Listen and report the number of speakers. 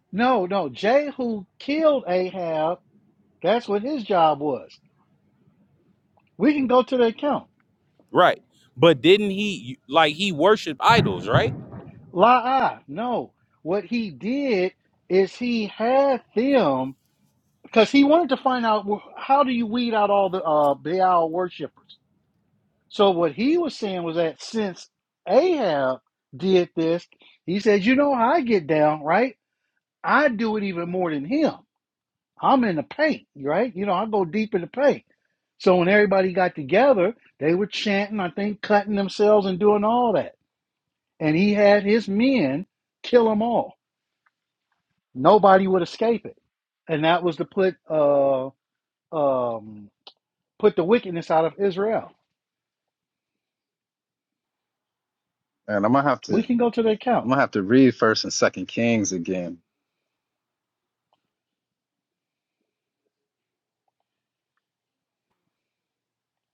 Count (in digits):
3